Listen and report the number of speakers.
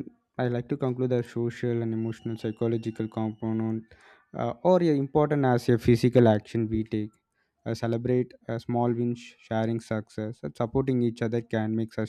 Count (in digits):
1